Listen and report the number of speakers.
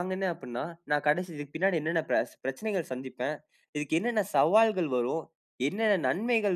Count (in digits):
1